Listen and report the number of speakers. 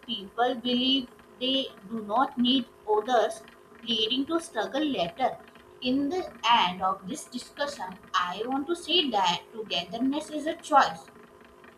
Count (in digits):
1